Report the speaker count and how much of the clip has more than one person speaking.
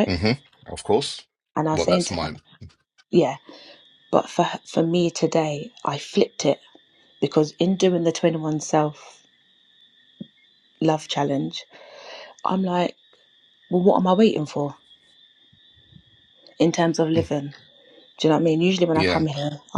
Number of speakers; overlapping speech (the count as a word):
two, about 5%